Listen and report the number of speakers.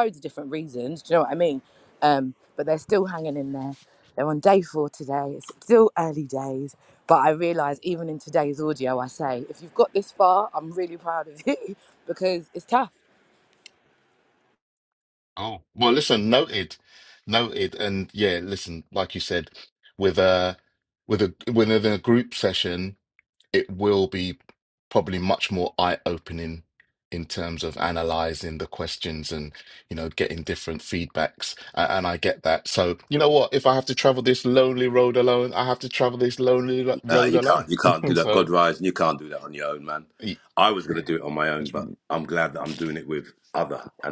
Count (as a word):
three